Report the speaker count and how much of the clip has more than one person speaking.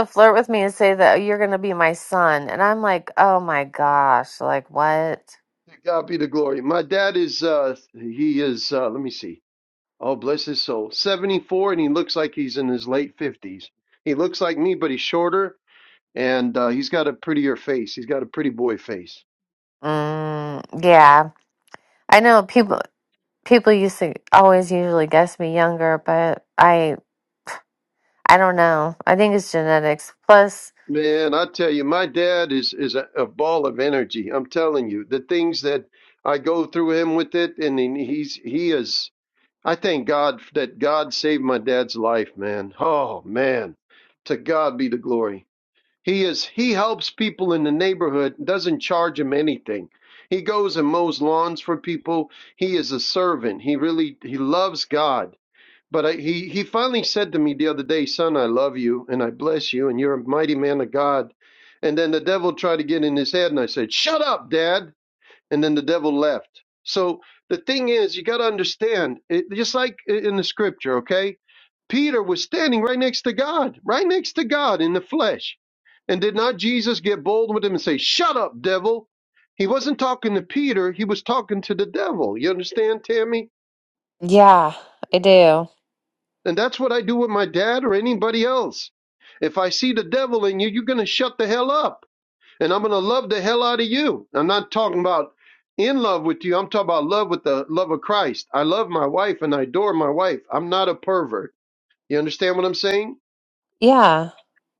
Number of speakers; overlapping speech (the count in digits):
2, under 1%